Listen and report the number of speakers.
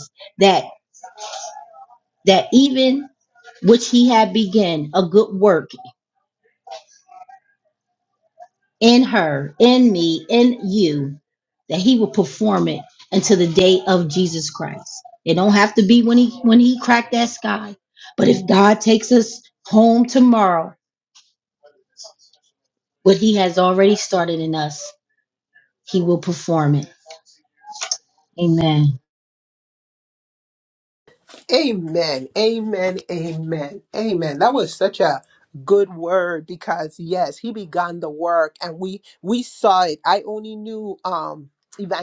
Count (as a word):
two